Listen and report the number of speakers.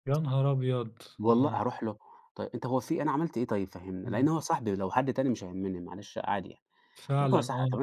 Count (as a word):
two